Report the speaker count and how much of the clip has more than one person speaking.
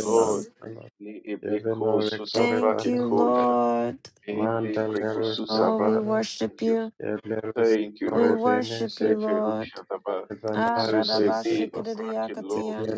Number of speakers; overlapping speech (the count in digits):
3, about 65%